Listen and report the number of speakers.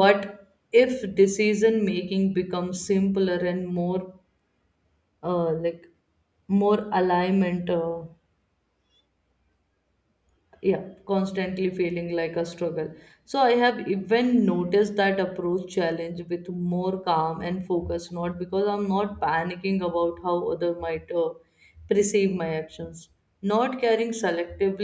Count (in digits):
1